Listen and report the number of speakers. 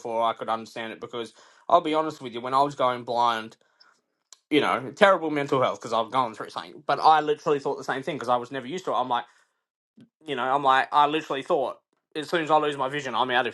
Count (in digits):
1